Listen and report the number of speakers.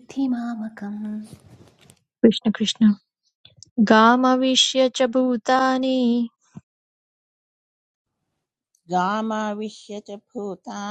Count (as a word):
three